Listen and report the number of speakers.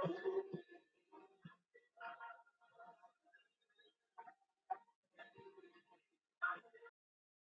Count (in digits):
0